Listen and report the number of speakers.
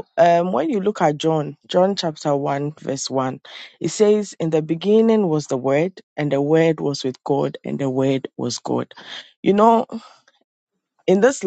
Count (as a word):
one